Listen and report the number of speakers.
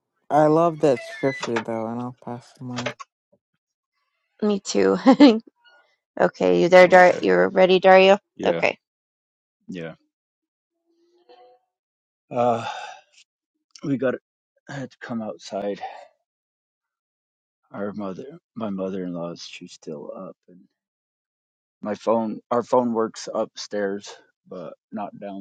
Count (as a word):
three